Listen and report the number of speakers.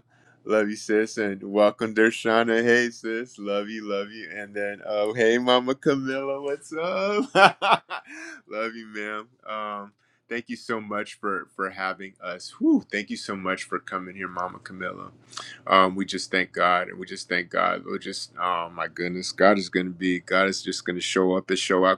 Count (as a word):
one